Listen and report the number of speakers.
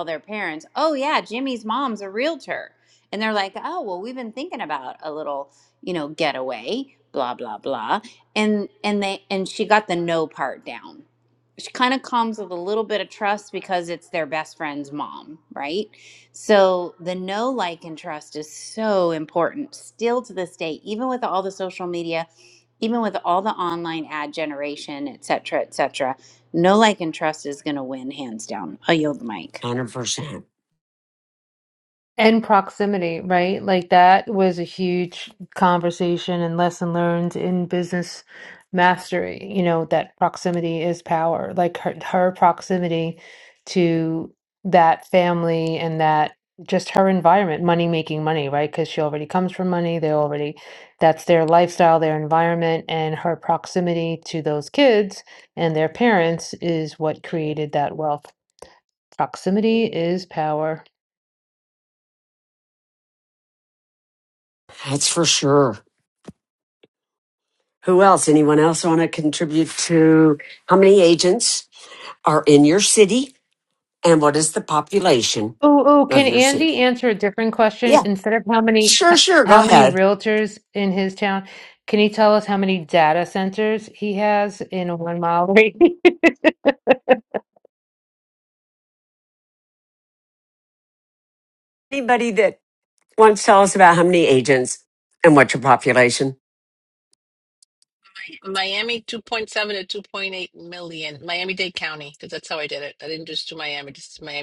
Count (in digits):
4